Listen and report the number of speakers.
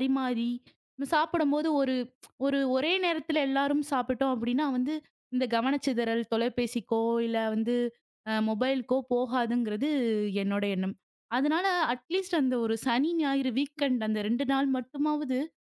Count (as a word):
one